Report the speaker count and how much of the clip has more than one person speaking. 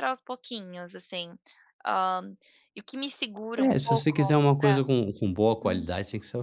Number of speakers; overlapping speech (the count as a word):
two, about 22%